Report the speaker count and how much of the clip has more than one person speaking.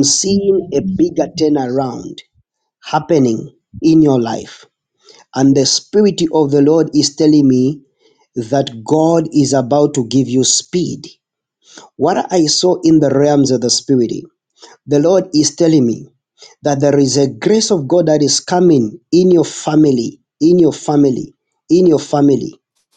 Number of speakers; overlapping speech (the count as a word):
one, no overlap